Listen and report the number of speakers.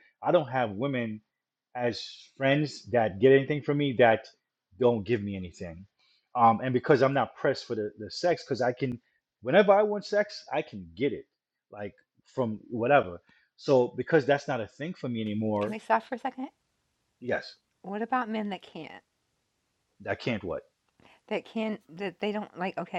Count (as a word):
two